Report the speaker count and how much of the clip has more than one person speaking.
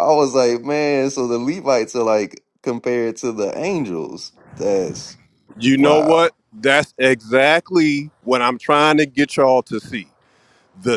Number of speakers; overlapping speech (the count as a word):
two, about 4%